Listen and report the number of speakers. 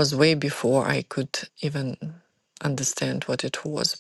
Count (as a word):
one